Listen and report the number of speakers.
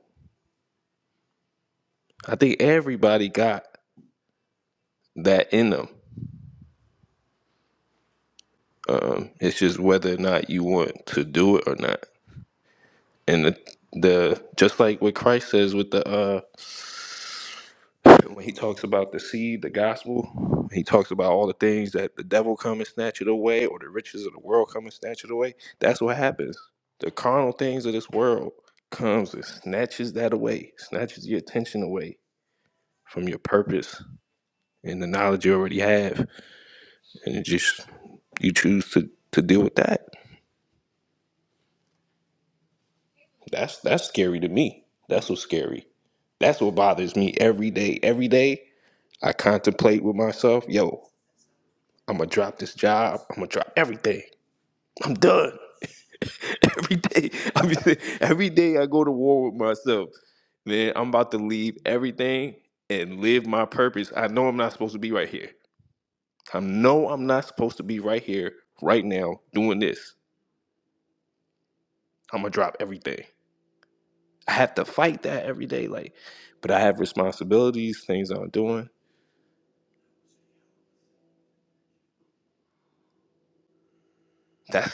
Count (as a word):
one